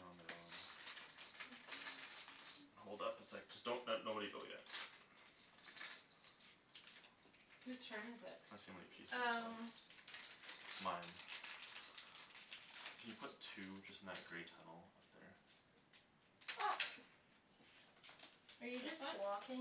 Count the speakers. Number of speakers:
3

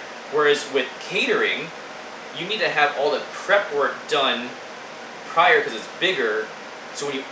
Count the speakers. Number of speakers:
1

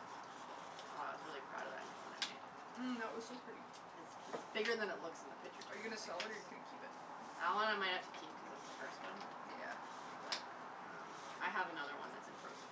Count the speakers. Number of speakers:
2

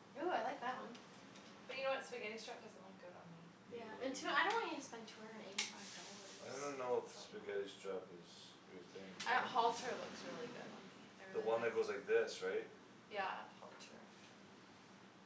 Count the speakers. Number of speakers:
3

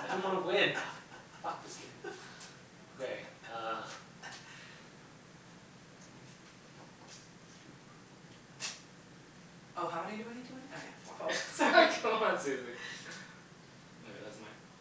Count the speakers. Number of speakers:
3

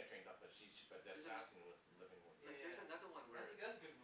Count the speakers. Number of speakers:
3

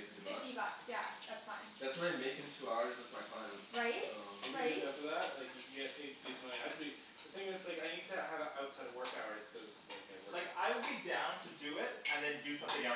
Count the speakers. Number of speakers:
4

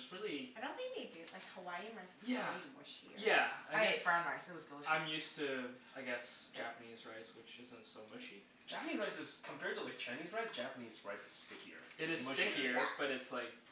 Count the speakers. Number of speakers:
4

